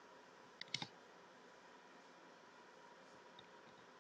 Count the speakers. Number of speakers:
0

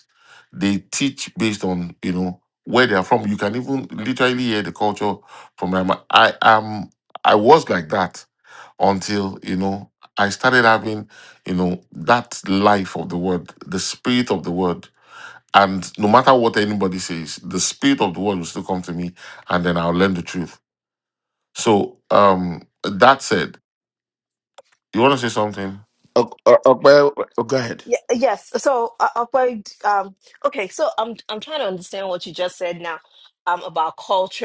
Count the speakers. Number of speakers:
3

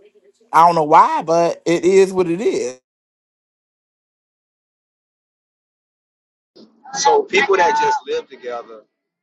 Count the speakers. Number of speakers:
2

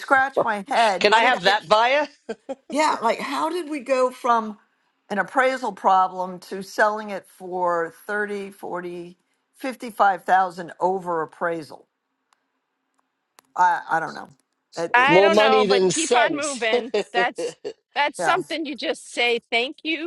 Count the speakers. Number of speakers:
3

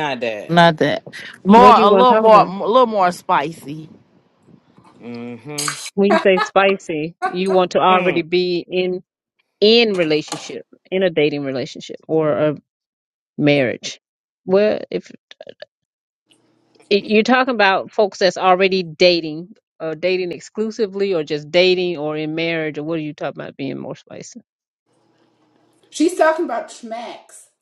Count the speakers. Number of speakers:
4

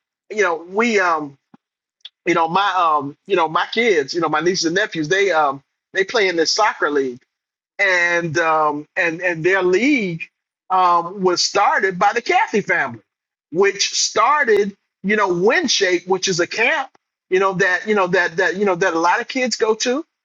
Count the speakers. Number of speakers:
1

